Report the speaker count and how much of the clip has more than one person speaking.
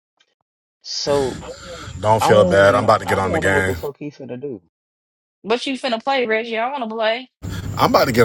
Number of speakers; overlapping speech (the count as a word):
three, about 19%